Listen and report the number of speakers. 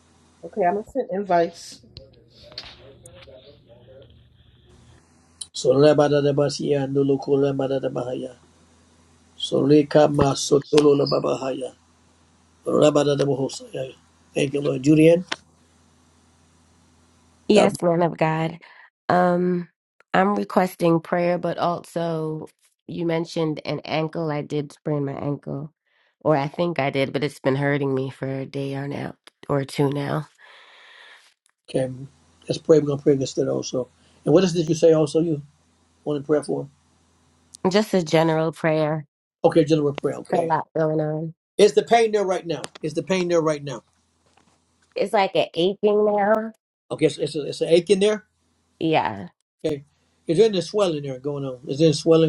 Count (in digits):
3